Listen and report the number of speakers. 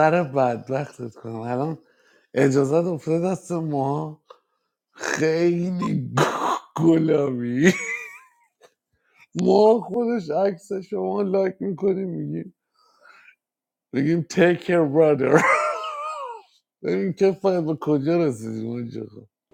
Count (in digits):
1